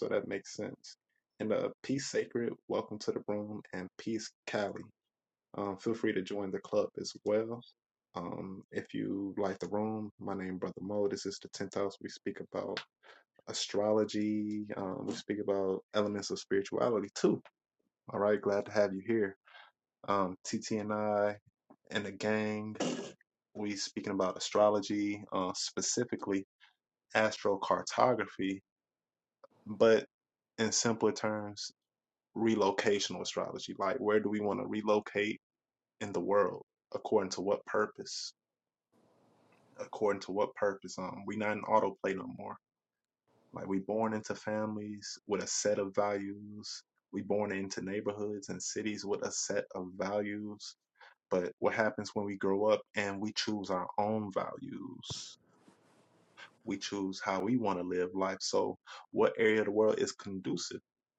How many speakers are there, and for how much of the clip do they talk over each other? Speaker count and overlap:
1, no overlap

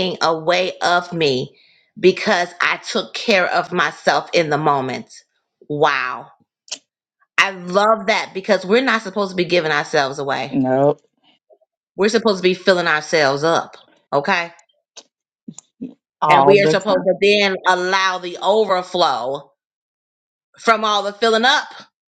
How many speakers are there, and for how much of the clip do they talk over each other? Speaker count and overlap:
2, about 4%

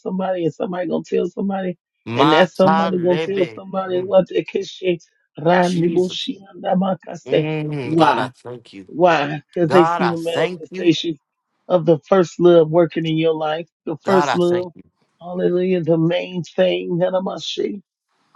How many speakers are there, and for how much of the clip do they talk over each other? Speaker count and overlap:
2, about 27%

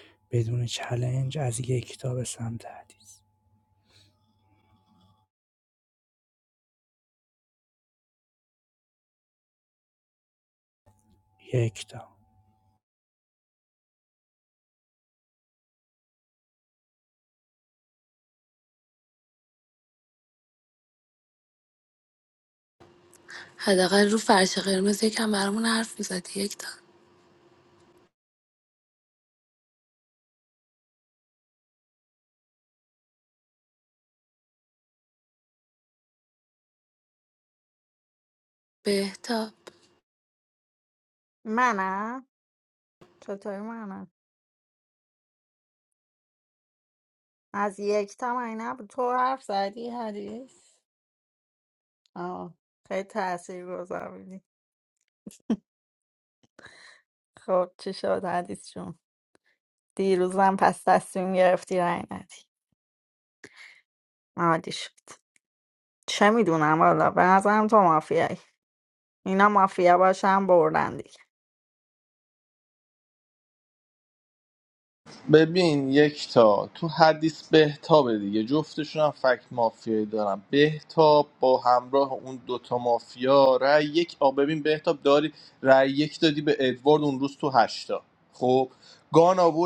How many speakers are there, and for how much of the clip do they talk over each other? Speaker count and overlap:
4, no overlap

